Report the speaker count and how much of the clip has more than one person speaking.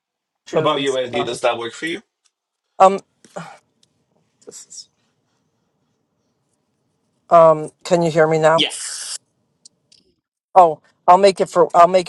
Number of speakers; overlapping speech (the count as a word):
two, about 7%